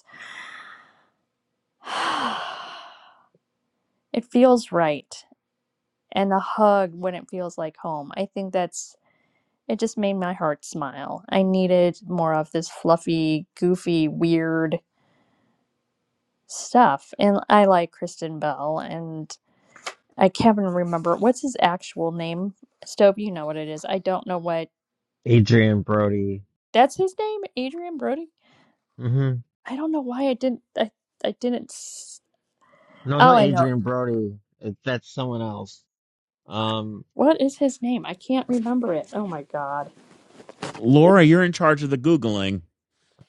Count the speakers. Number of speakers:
3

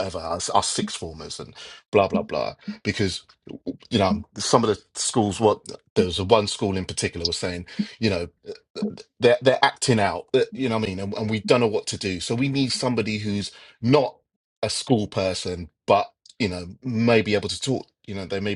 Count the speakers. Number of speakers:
1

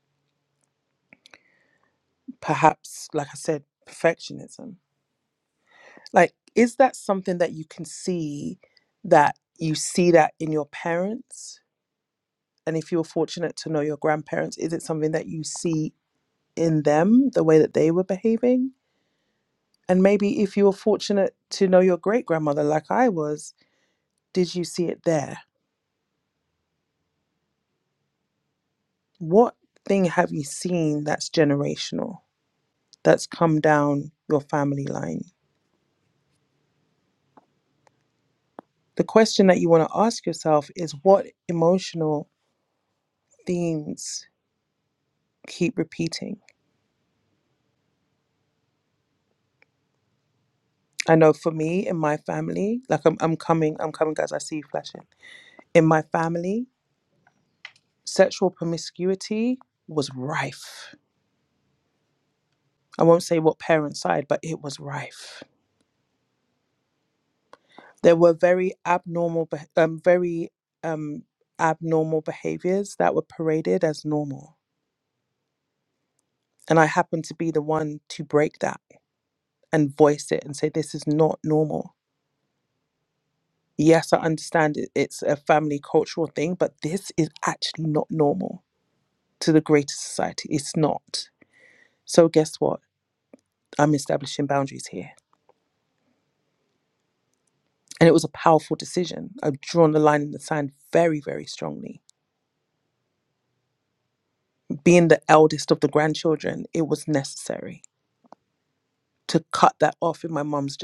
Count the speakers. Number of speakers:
1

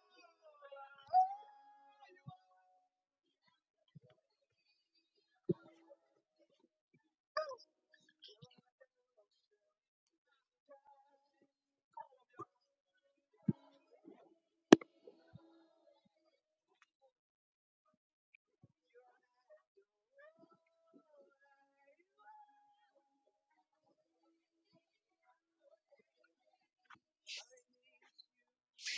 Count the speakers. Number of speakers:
0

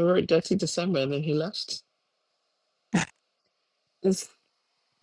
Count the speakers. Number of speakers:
1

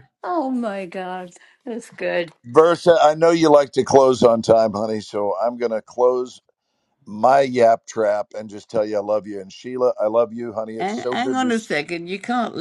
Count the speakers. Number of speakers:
3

